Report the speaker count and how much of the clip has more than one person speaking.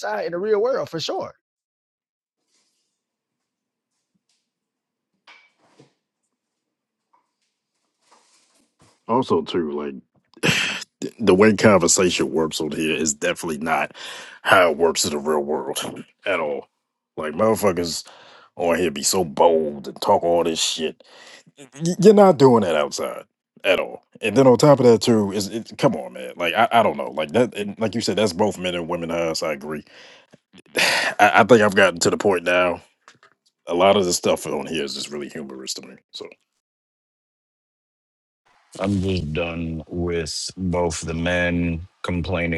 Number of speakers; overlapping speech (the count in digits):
3, no overlap